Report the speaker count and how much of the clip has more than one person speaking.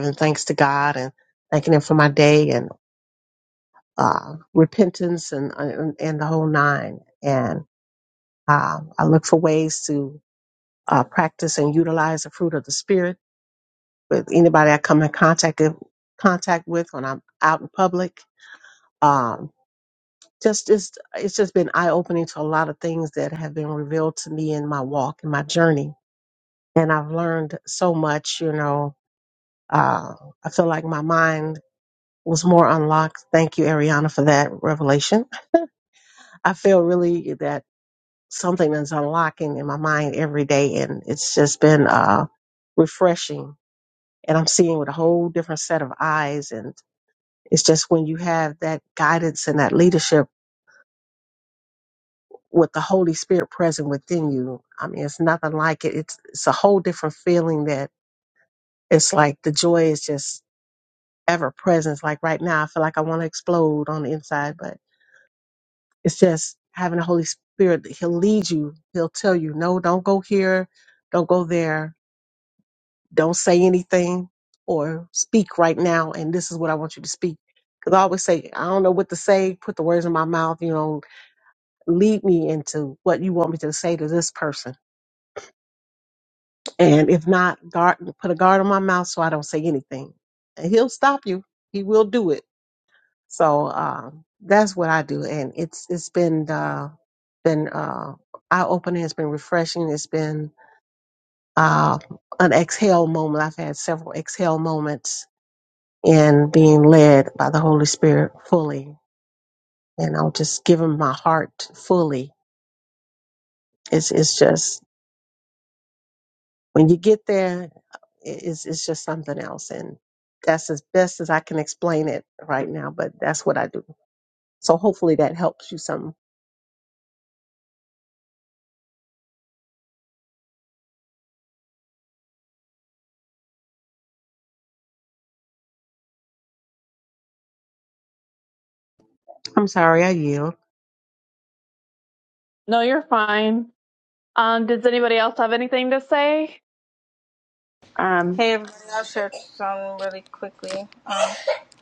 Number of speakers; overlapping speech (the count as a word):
three, under 1%